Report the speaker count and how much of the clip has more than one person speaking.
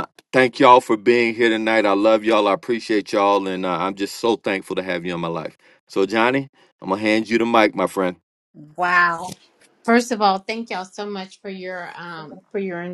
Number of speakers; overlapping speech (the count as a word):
two, no overlap